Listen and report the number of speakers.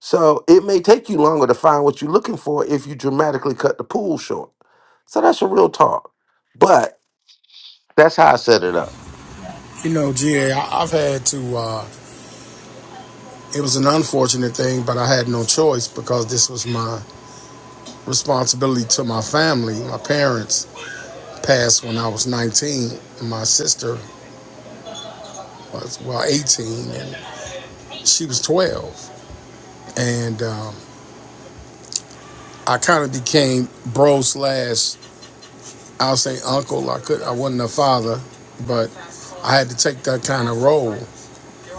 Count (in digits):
2